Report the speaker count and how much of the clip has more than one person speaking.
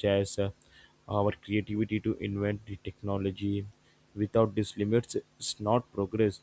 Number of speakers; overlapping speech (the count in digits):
1, no overlap